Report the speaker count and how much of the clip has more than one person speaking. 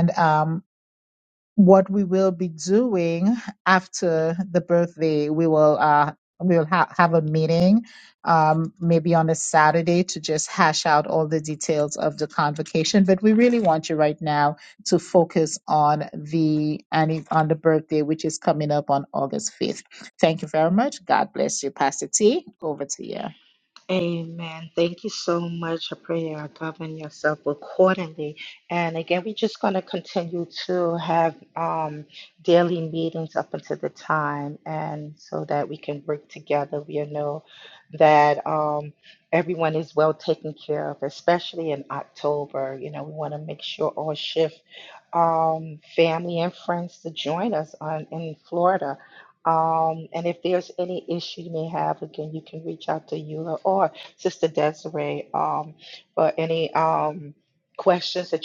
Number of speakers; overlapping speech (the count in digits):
2, no overlap